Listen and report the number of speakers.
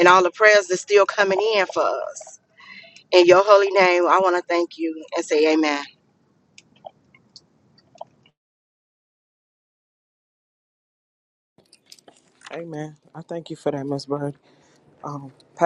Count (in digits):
2